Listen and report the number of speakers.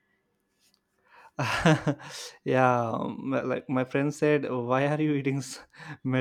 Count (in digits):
1